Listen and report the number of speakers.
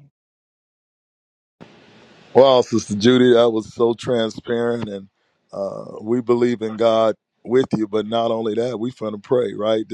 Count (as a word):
one